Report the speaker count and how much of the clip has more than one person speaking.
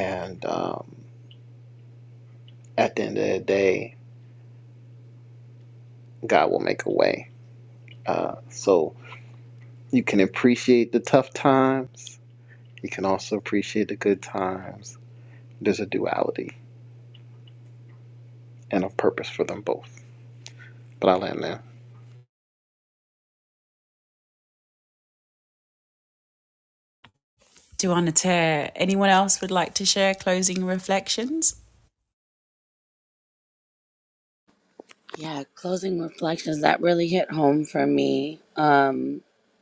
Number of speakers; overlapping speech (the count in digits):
3, no overlap